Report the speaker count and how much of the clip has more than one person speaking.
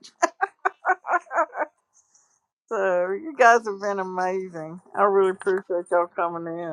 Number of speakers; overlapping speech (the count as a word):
one, no overlap